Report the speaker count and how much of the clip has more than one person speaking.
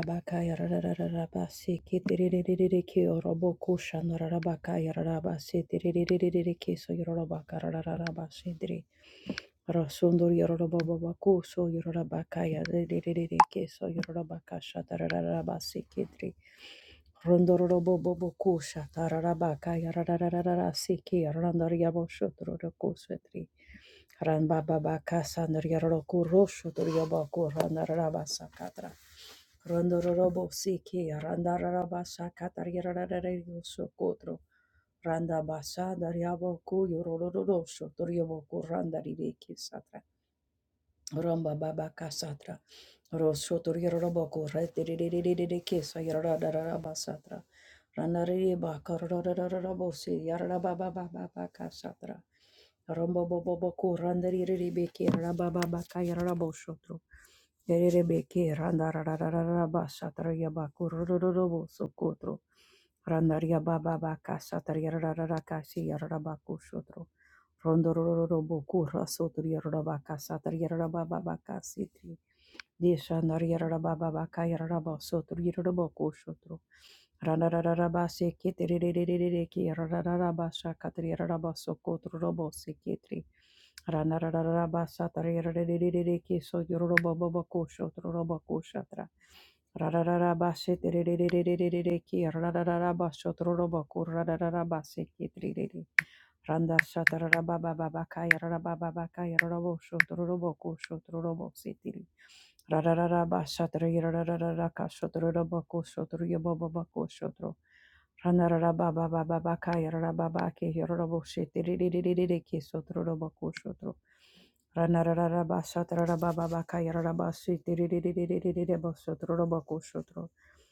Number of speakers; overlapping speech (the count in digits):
1, no overlap